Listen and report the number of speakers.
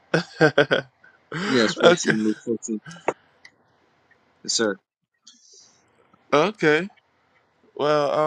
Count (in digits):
2